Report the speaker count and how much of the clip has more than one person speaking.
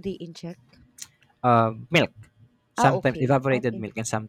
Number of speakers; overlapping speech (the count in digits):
2, about 24%